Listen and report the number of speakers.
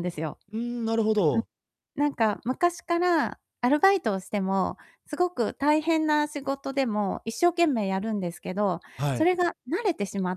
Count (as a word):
two